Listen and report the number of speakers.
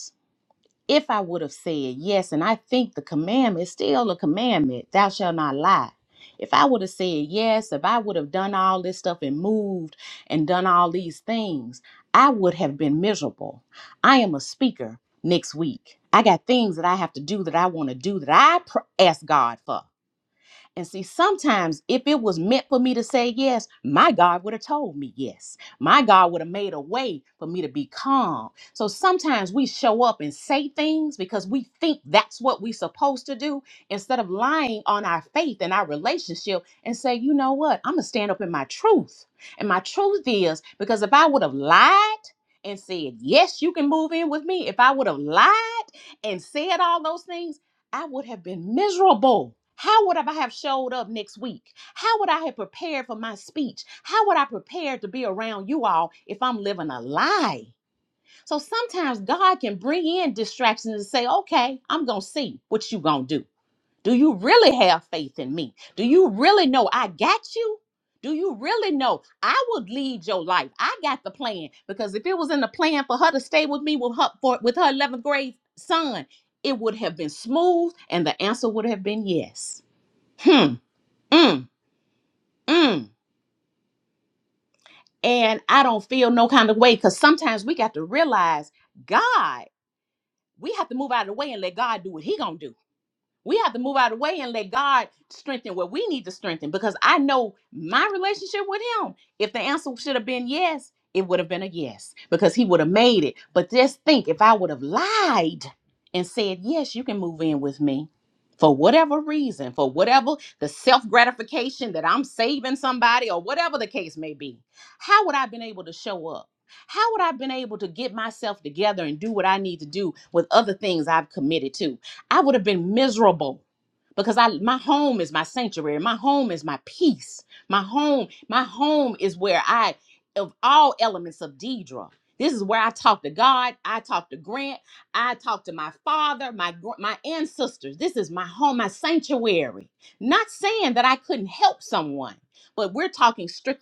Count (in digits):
1